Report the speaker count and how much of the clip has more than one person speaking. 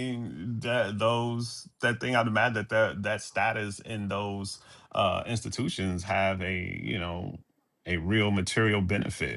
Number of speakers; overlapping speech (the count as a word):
one, no overlap